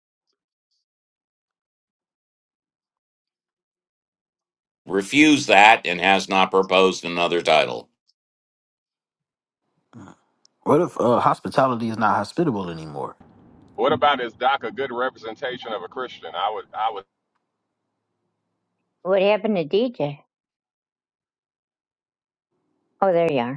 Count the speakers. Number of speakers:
4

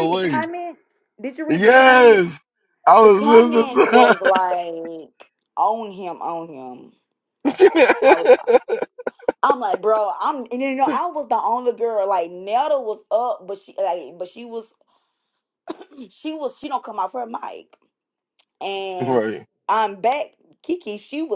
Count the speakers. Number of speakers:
2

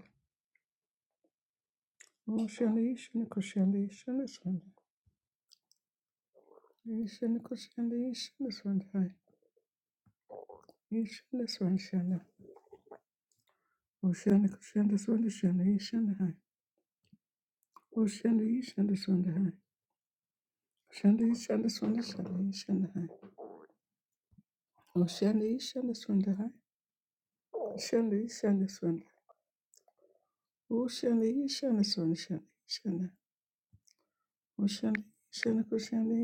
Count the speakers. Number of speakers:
1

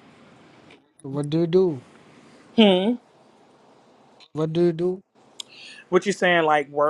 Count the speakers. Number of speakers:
2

